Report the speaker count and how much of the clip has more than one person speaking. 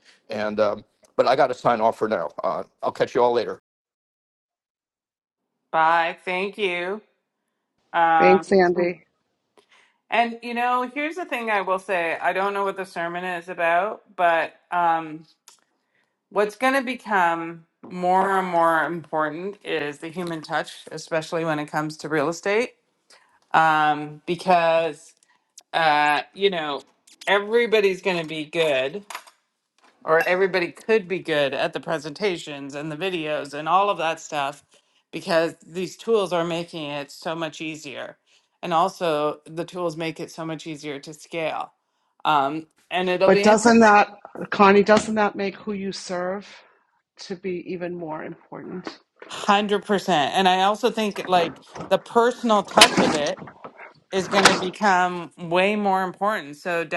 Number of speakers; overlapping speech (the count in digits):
3, about 1%